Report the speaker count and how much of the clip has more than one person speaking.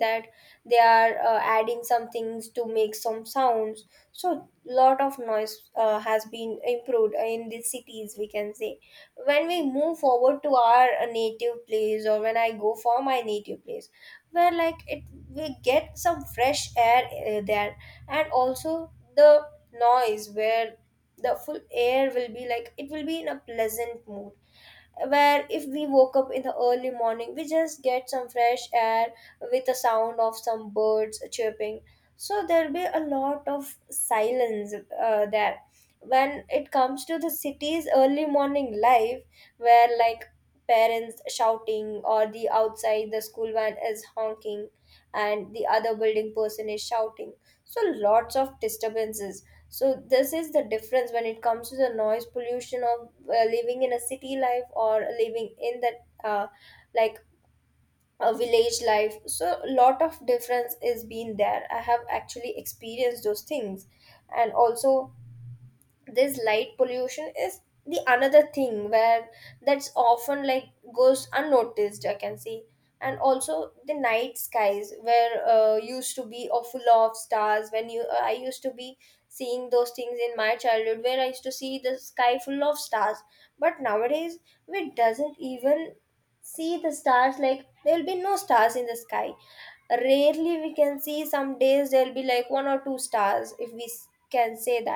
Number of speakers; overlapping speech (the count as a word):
one, no overlap